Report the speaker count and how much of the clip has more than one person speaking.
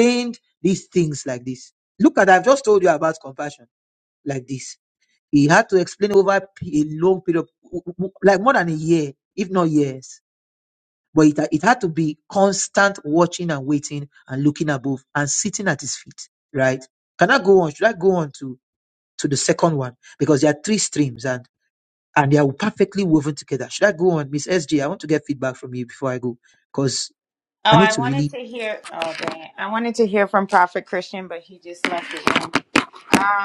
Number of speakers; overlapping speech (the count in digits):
2, about 2%